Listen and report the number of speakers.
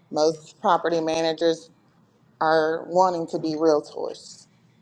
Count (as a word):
one